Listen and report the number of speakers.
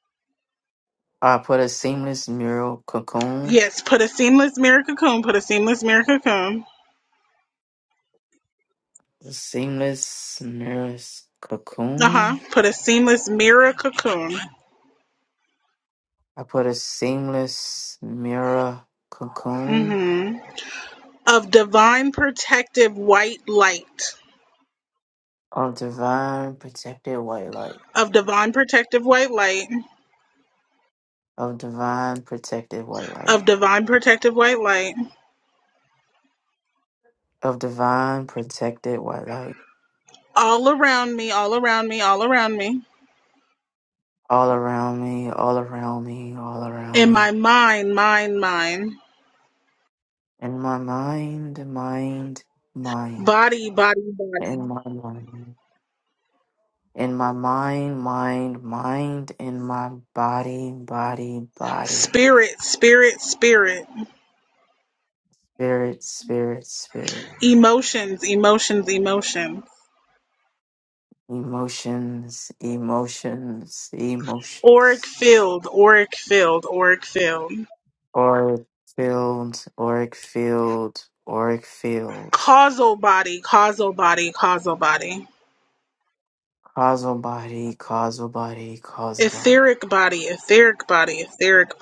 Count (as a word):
two